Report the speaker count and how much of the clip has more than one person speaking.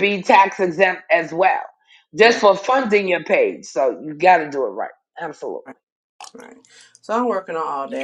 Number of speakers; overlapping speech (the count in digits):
2, about 2%